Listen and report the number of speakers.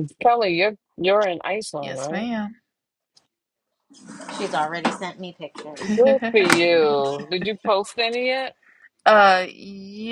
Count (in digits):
3